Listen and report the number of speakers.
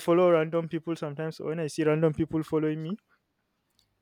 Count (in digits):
1